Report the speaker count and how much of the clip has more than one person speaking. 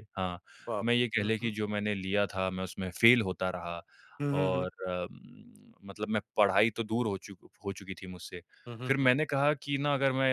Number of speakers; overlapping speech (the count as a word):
two, about 9%